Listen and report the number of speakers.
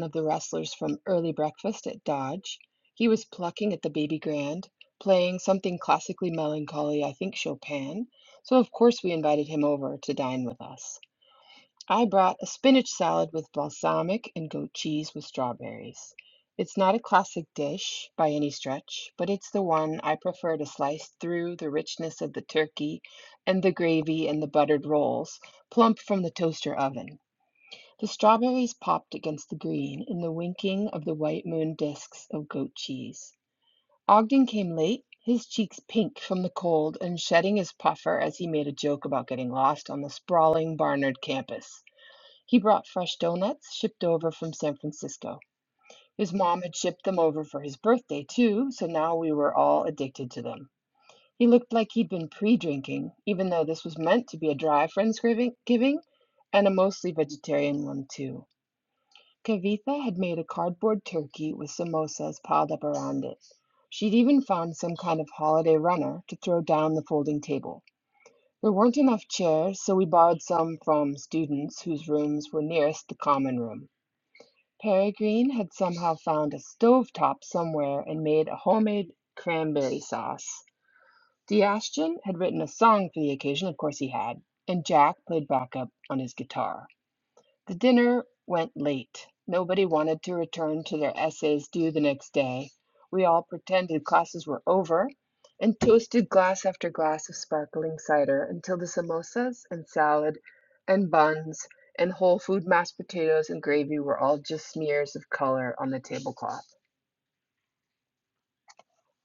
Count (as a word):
one